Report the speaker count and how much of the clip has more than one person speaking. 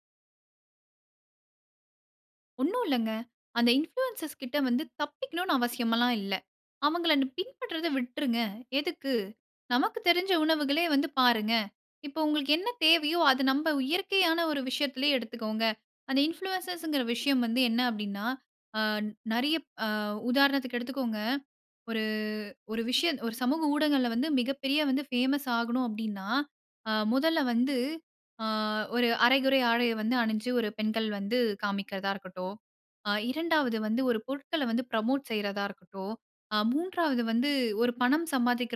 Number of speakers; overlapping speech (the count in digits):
1, no overlap